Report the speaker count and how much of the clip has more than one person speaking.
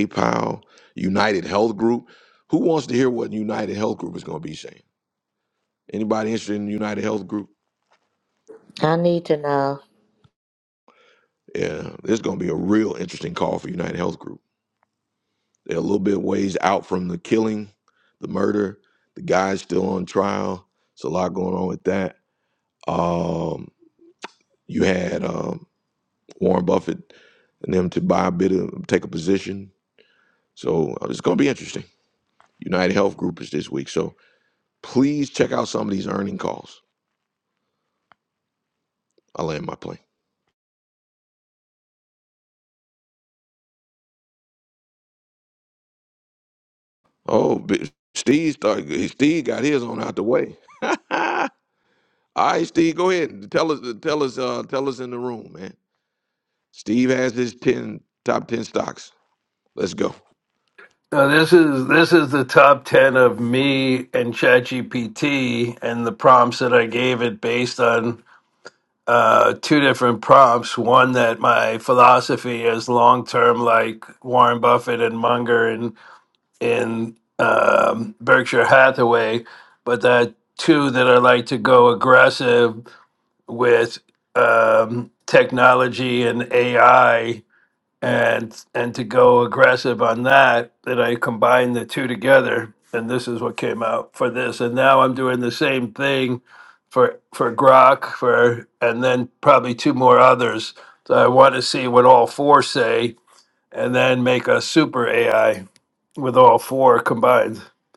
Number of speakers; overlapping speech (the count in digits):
3, no overlap